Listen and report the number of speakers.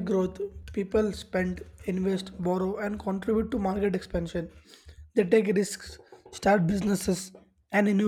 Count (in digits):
1